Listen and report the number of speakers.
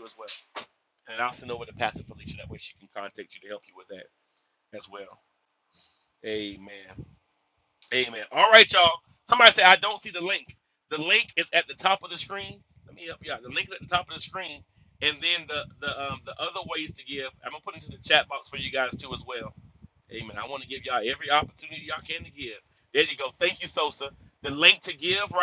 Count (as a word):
one